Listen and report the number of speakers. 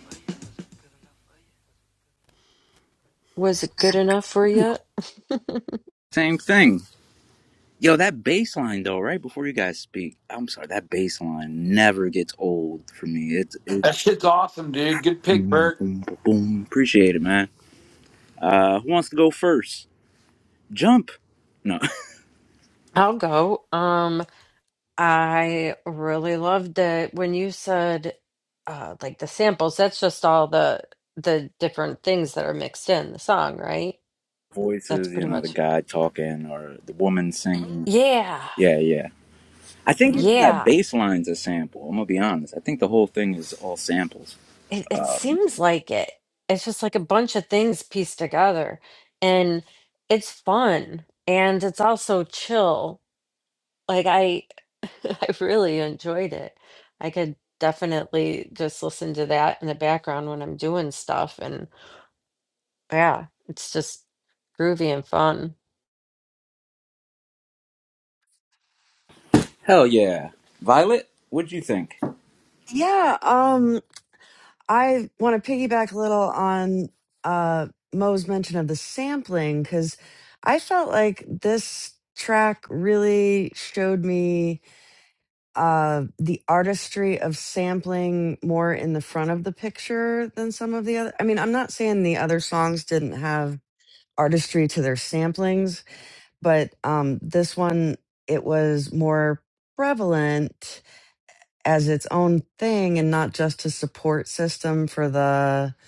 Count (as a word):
four